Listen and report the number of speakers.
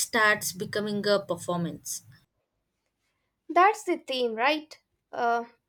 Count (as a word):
two